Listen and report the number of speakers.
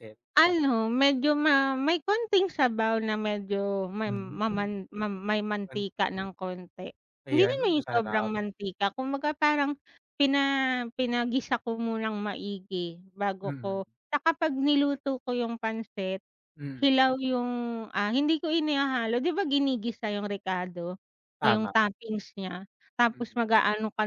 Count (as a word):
two